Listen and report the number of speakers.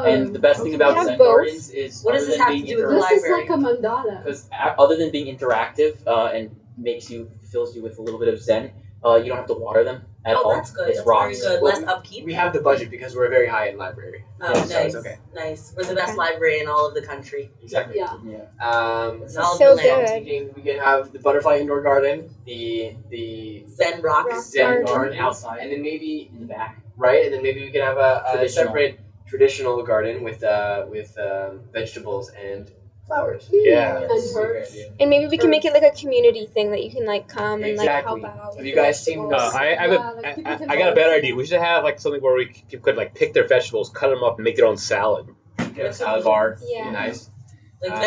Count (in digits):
6